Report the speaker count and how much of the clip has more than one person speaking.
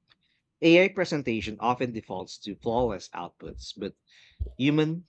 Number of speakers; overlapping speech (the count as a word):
one, no overlap